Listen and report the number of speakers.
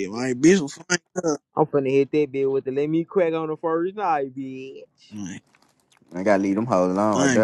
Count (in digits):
3